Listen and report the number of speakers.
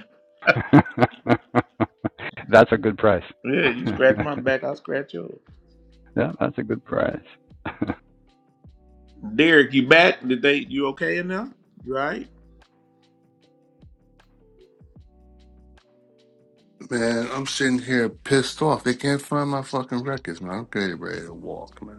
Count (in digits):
3